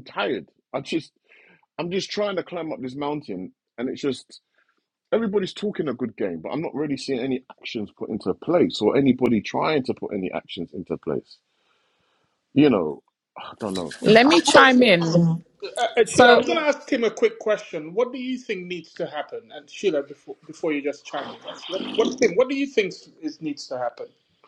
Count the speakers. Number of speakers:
3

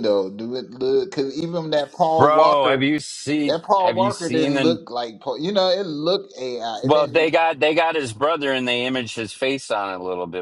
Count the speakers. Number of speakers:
2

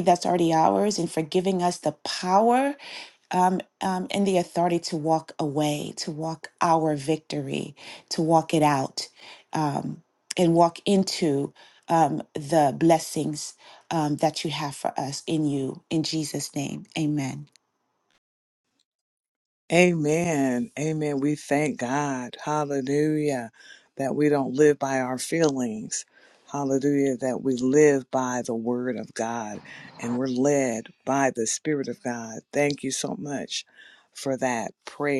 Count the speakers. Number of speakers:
2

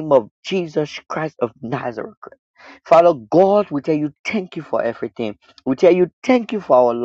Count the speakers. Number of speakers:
1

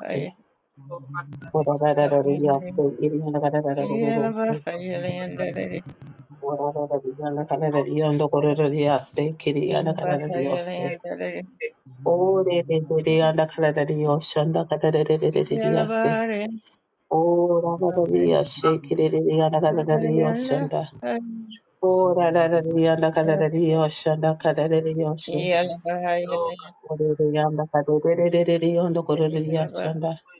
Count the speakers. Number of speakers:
3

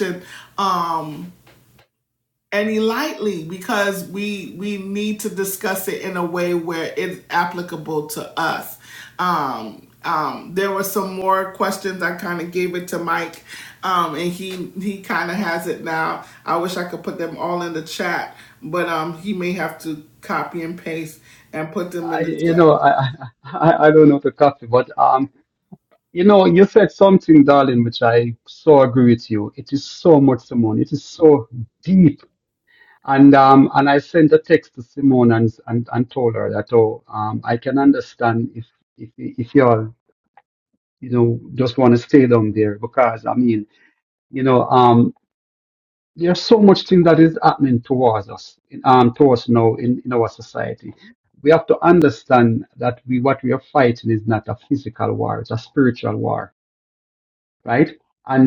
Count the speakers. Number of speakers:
2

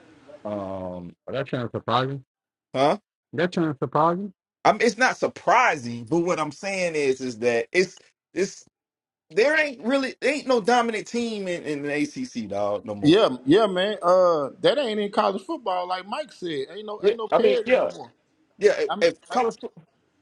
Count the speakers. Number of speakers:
3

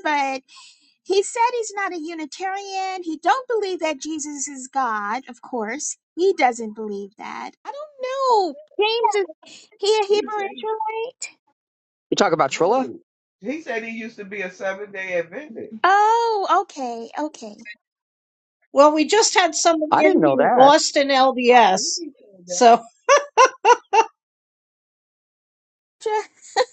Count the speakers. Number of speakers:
4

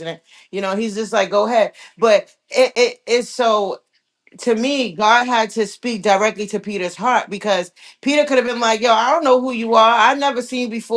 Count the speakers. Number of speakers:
1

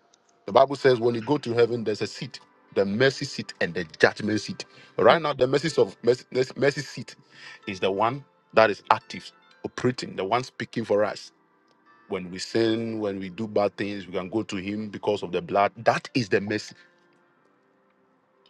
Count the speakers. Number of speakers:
1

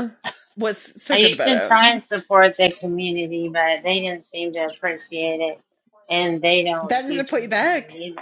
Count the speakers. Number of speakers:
2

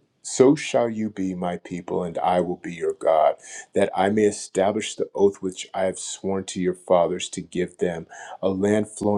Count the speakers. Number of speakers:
1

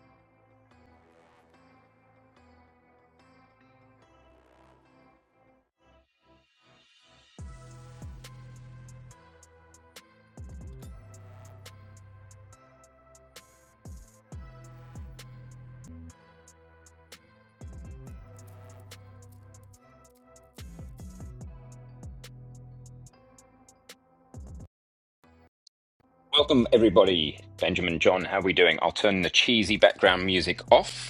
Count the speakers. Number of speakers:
1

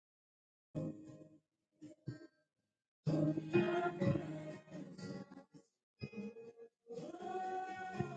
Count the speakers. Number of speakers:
0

